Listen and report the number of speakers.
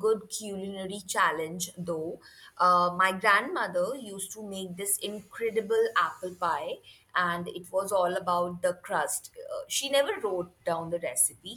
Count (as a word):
one